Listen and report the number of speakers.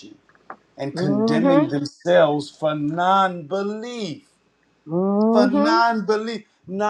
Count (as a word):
two